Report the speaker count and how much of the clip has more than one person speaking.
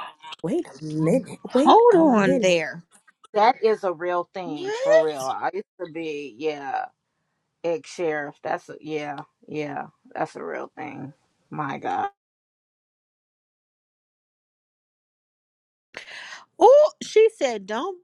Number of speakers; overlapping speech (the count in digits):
3, about 9%